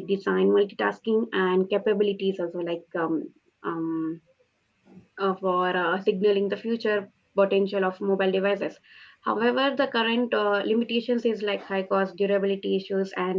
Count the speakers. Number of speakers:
1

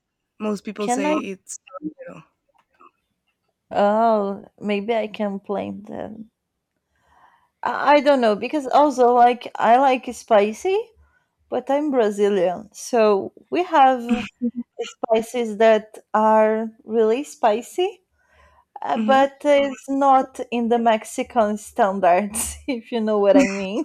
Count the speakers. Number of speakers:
2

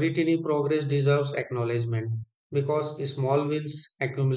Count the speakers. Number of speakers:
1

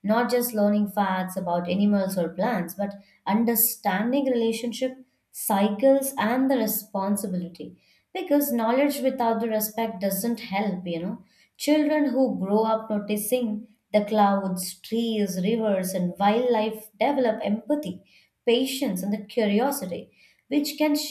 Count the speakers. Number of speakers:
1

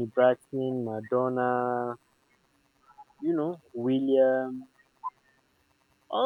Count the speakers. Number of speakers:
1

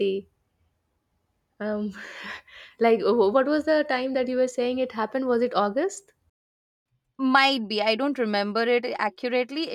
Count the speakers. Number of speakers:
2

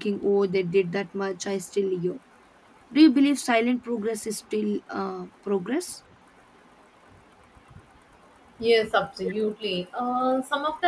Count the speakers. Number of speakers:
2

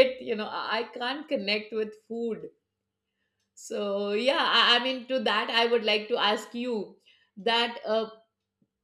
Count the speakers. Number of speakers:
1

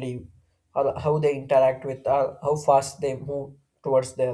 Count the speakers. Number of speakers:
1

